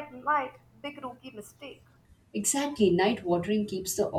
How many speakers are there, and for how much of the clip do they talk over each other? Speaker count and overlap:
two, no overlap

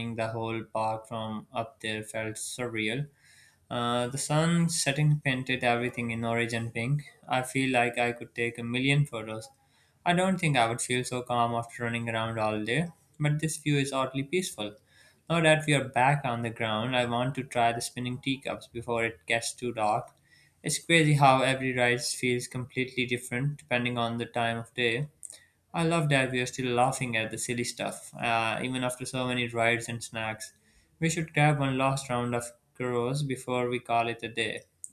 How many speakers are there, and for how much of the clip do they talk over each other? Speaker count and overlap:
one, no overlap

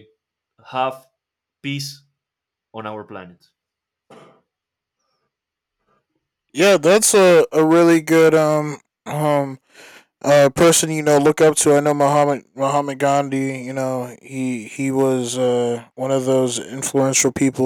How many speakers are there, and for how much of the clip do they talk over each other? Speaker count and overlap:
two, no overlap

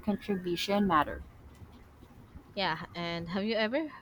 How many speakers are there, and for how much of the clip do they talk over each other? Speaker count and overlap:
two, no overlap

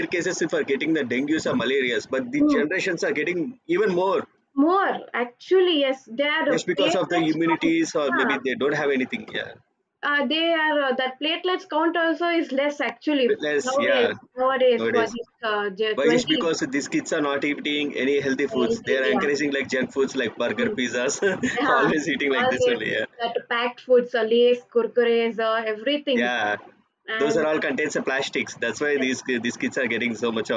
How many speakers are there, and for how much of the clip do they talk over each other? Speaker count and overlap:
two, about 19%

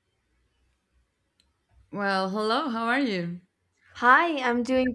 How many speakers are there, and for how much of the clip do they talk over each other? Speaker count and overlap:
two, no overlap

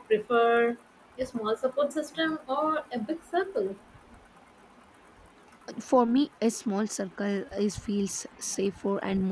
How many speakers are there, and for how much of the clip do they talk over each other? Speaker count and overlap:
two, no overlap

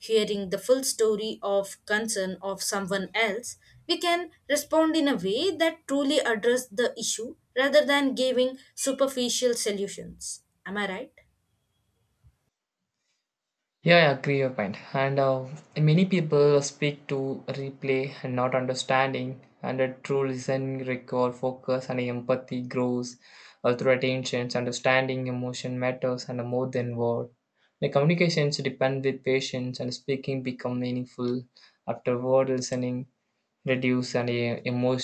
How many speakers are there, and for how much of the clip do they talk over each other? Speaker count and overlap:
two, no overlap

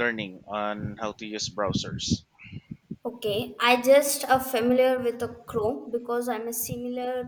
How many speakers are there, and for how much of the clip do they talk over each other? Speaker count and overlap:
two, no overlap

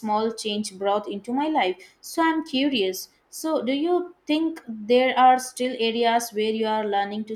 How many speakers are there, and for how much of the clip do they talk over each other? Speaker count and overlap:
one, no overlap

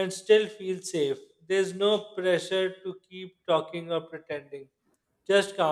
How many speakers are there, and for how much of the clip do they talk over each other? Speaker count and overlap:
one, no overlap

